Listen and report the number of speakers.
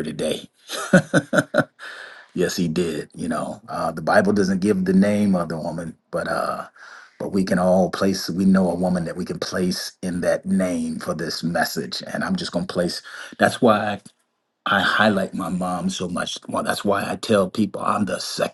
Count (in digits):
1